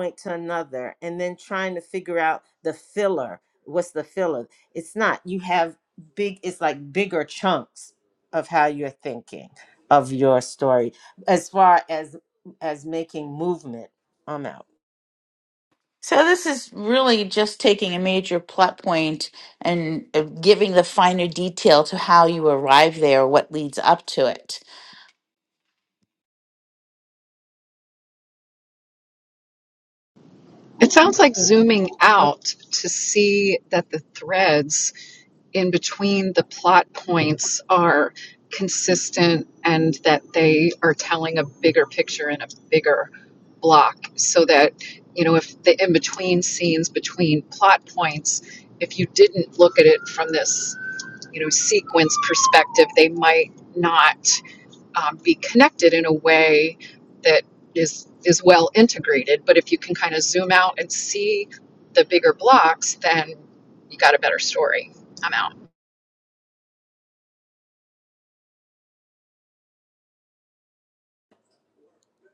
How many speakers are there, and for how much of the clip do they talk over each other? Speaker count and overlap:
3, under 1%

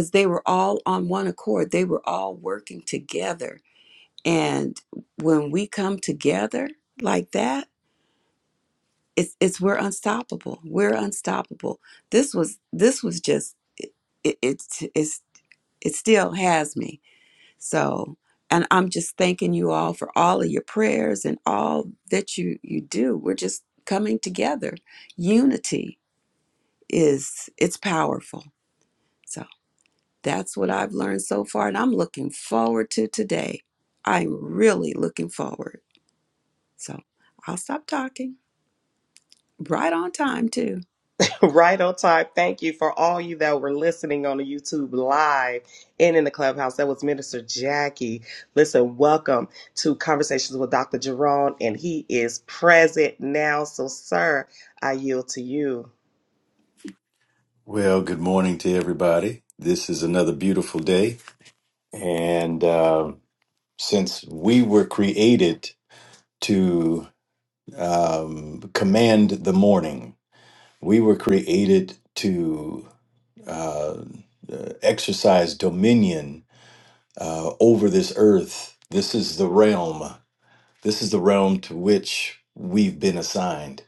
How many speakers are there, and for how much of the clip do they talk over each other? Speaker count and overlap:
3, no overlap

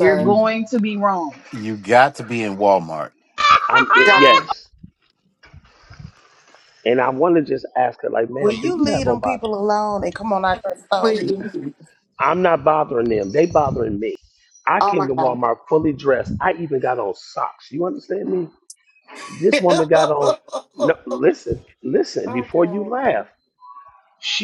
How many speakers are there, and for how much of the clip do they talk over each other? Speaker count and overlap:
5, about 18%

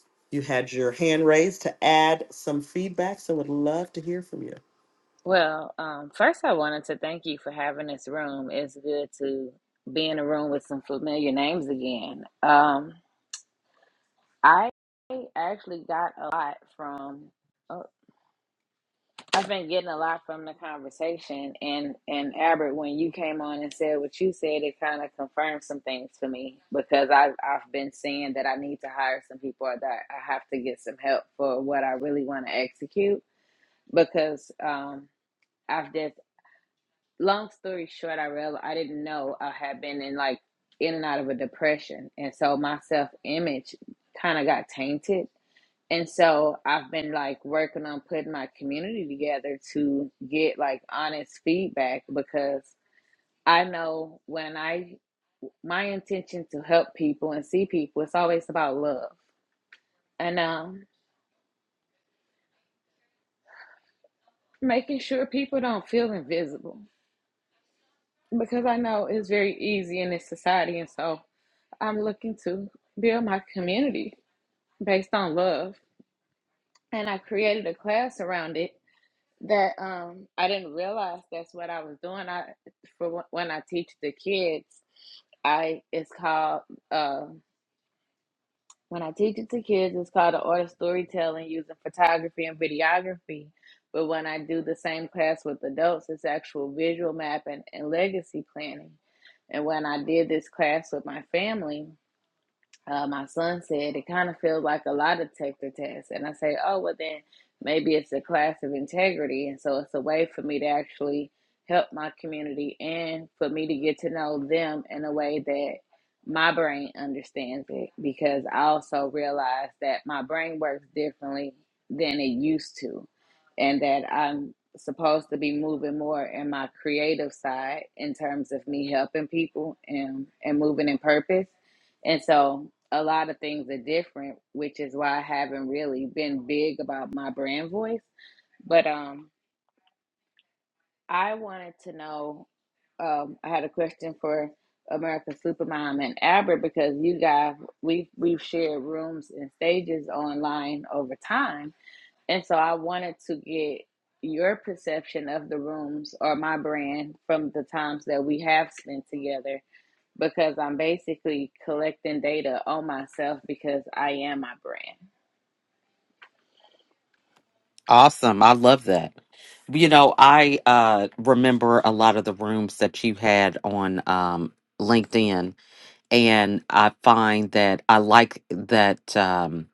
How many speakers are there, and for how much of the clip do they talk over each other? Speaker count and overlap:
3, no overlap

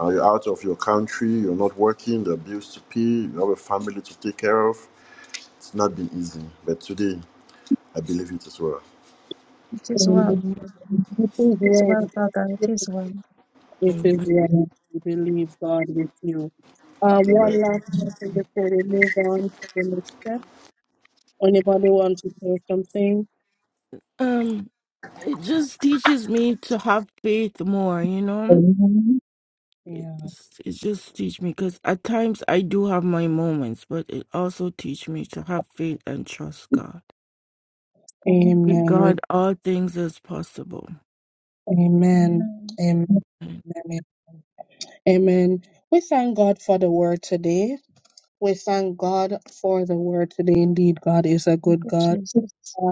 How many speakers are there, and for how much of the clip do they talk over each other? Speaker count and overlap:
4, about 6%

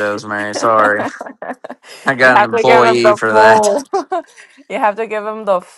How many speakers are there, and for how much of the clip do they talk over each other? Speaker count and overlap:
2, about 25%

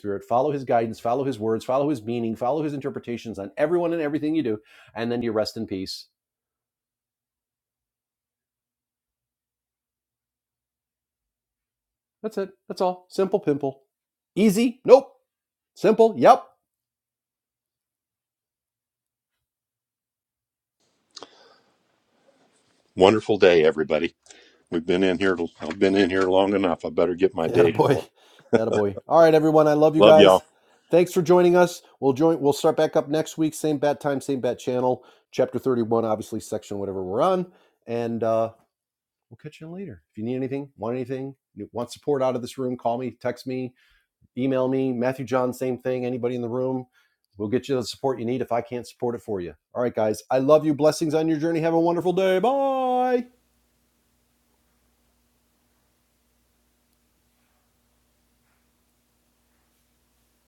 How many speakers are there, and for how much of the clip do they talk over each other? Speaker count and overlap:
2, about 1%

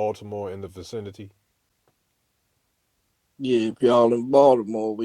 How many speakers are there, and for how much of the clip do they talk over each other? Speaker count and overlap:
2, no overlap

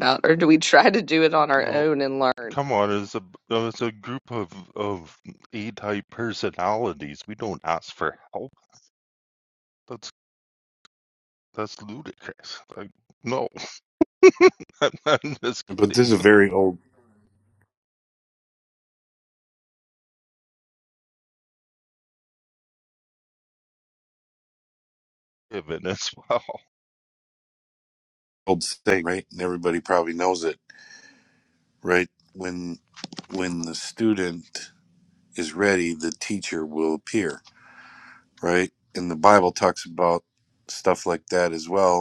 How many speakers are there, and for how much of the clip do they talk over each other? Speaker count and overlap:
3, about 1%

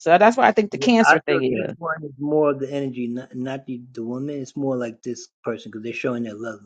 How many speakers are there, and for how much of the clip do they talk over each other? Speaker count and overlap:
2, about 14%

